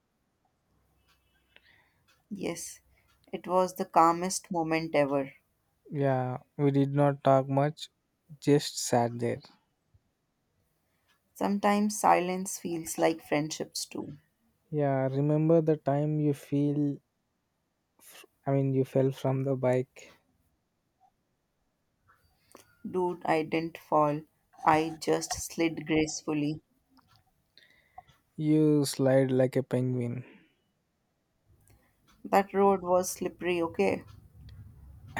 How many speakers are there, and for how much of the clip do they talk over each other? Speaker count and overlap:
2, no overlap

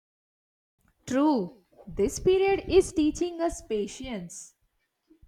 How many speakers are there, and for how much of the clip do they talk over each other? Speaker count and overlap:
1, no overlap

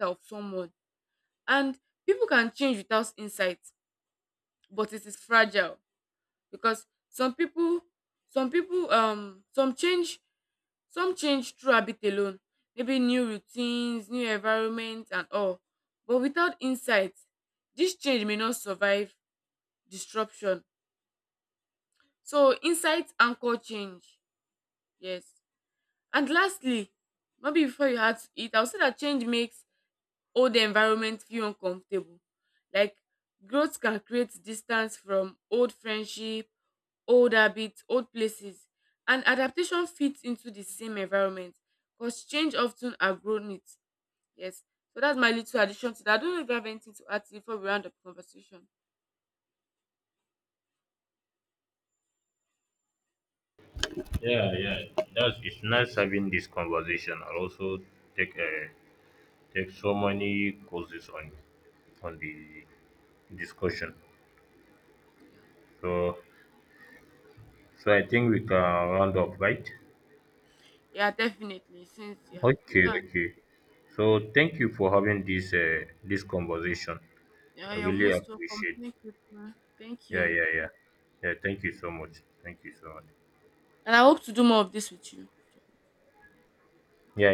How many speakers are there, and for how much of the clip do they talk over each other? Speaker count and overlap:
2, about 2%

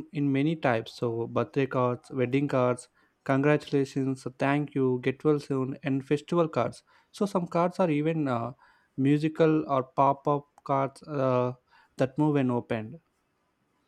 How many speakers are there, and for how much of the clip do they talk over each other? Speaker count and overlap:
1, no overlap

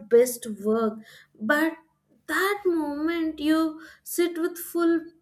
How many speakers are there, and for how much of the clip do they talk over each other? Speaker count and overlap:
1, no overlap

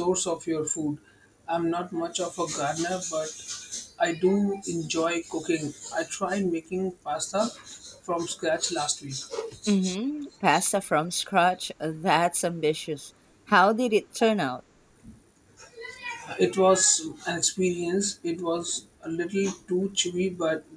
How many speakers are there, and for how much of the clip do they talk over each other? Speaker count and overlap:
2, no overlap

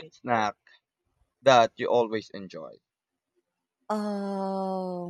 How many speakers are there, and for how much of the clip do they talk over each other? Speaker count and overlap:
2, about 2%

